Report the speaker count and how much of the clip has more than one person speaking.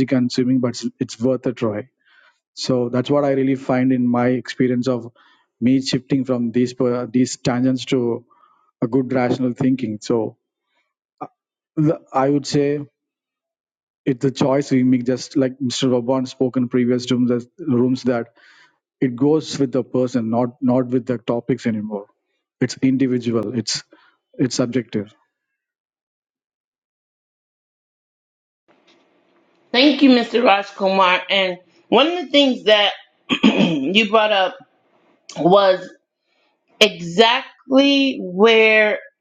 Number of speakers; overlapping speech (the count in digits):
2, no overlap